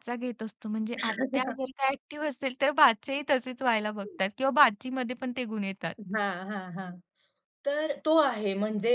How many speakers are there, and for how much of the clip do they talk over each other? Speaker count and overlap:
2, no overlap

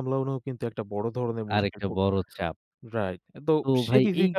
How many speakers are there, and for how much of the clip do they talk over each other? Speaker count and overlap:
2, about 28%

